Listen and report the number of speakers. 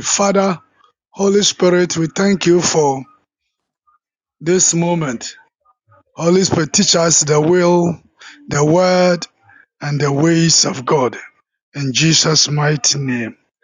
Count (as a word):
one